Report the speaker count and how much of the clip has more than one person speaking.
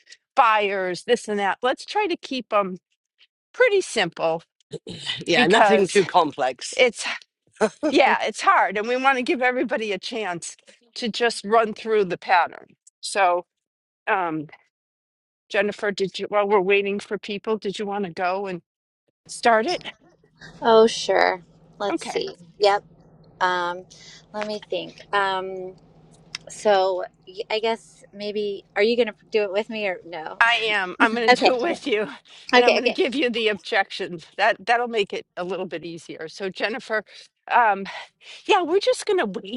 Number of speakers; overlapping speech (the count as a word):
three, about 5%